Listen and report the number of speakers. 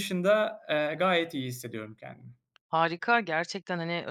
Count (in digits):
2